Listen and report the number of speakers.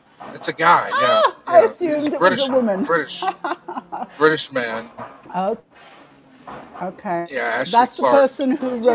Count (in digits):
2